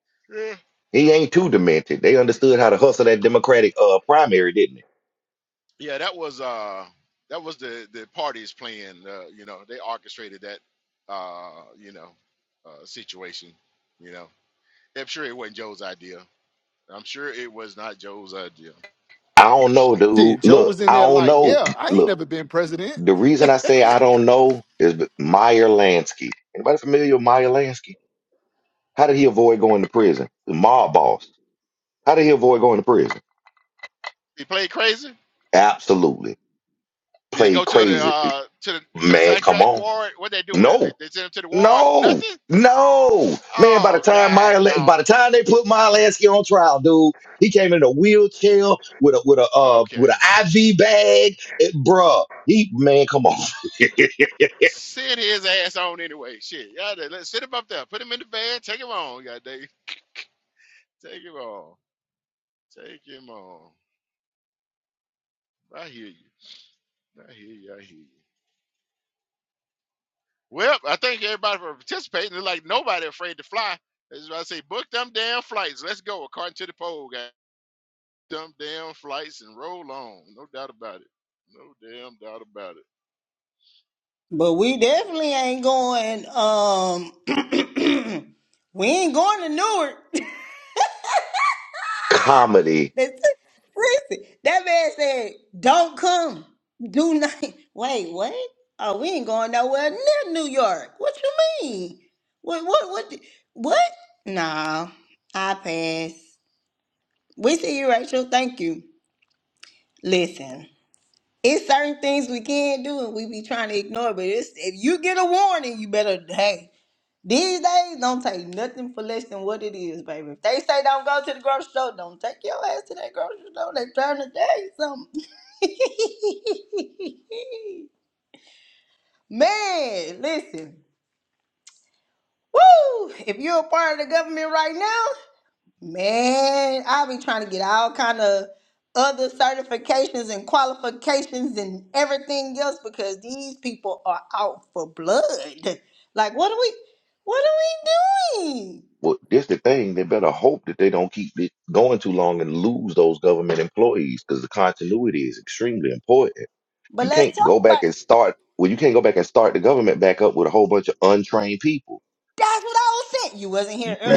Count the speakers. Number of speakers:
4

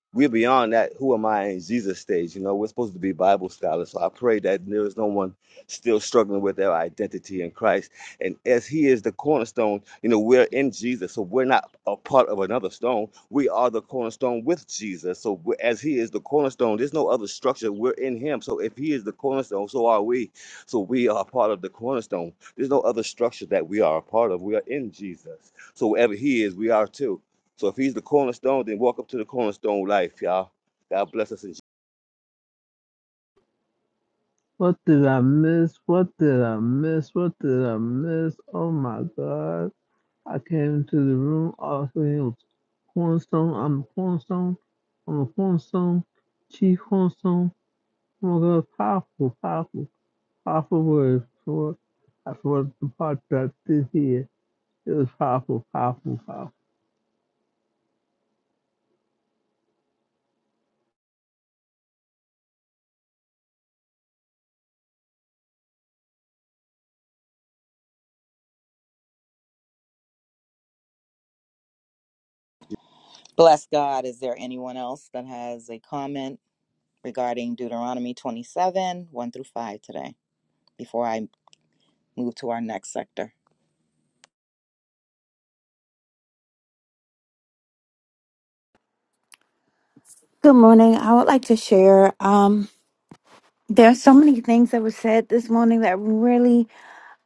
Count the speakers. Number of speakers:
4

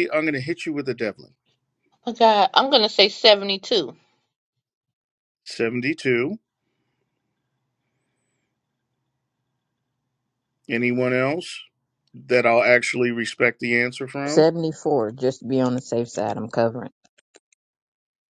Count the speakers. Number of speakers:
3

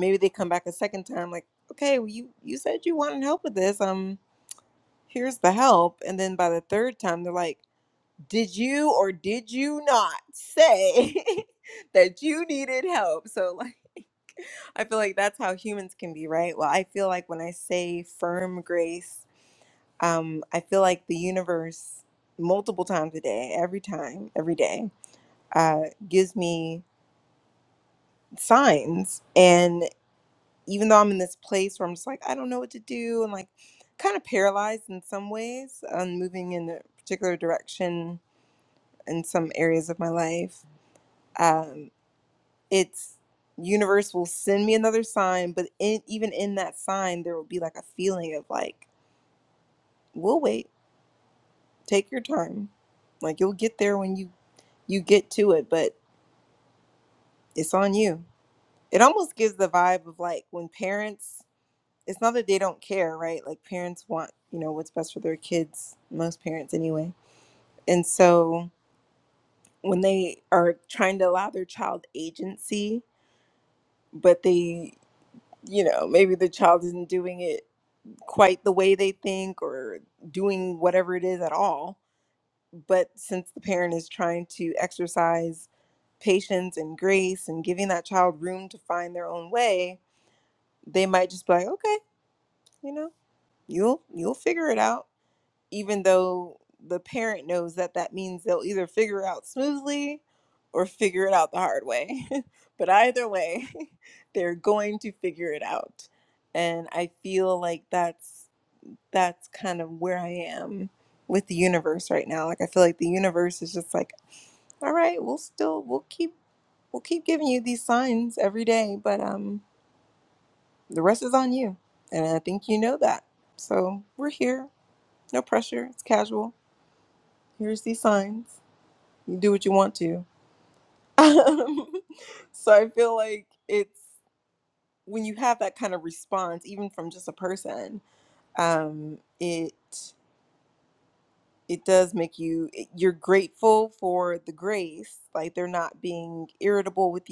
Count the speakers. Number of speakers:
1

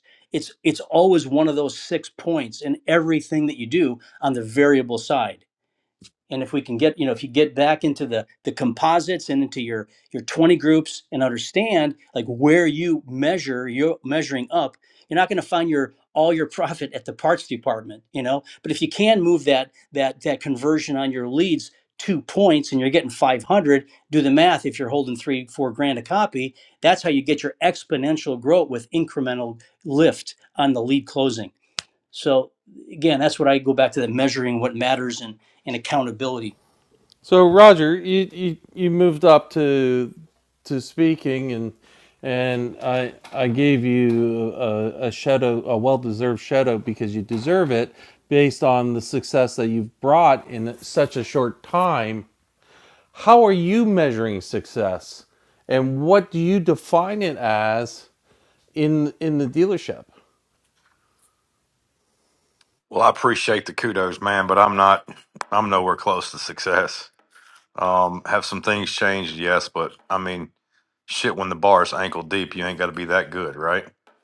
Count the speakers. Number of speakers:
3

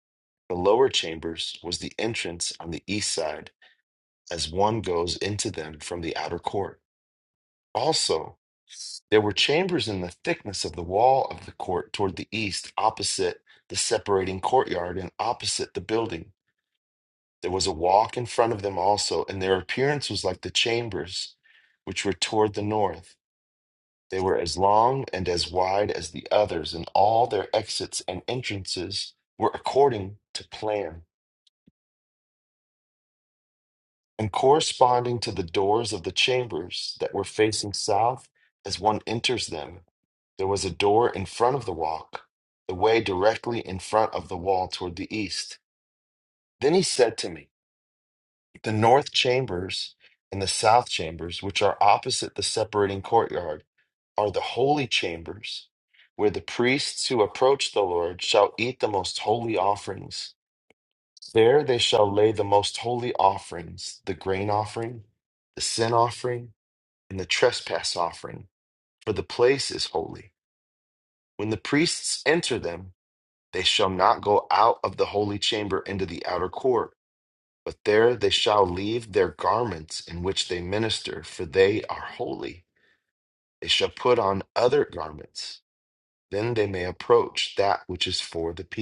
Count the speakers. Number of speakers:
1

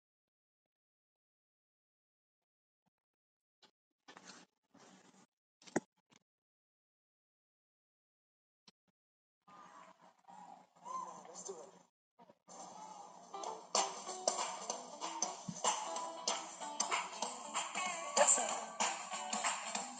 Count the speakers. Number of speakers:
0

